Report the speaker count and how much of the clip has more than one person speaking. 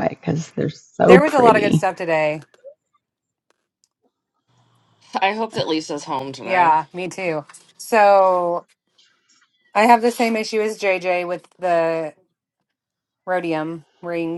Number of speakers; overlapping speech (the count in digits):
3, about 7%